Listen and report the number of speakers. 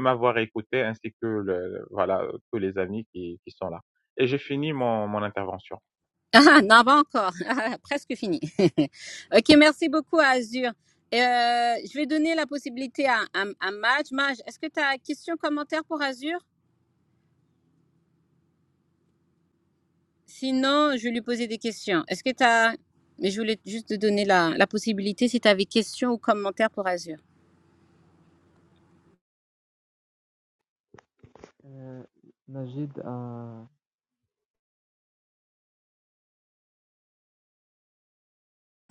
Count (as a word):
three